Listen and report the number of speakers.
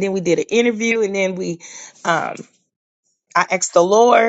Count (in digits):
1